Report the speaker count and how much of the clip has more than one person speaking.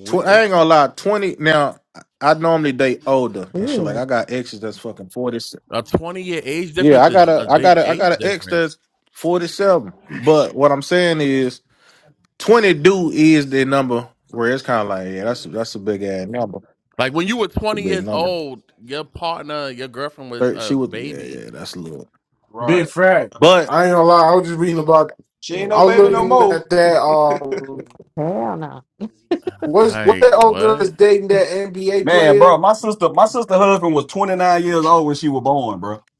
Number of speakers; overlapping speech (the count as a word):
five, about 21%